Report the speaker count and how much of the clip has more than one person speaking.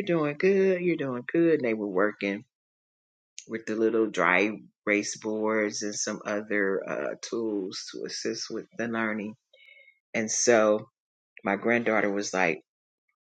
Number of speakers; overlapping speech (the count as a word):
one, no overlap